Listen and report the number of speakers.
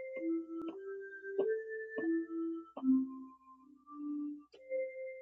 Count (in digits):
0